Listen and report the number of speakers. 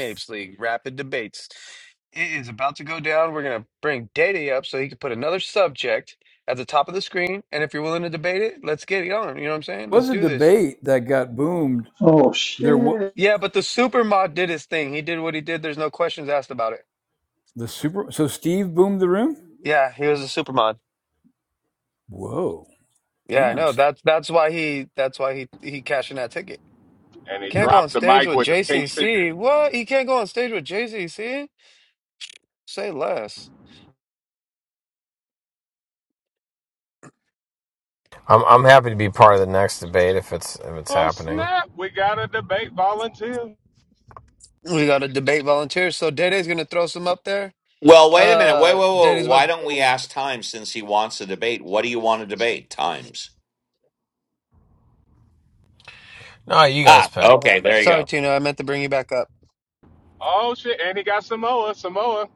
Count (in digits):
6